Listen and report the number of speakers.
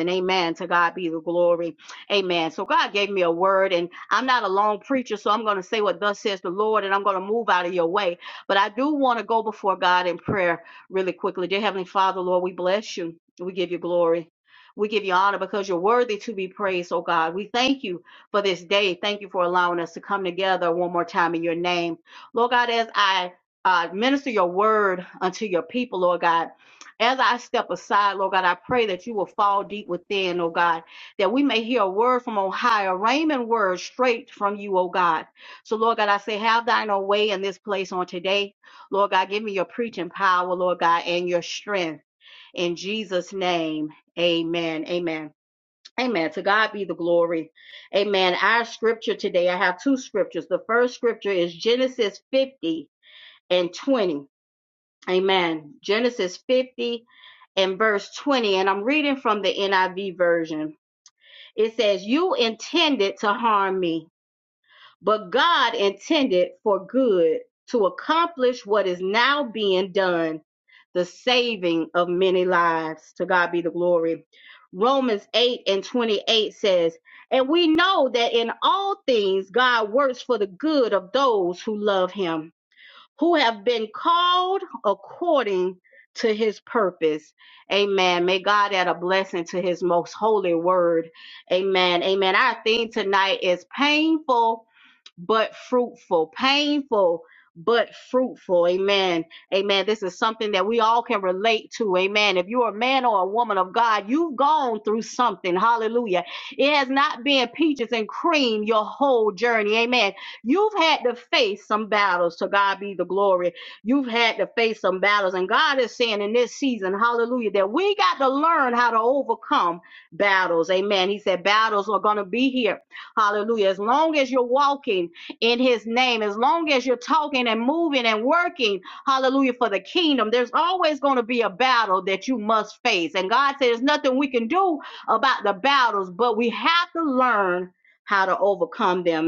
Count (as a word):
one